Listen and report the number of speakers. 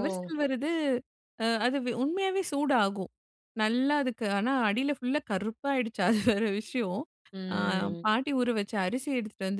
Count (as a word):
two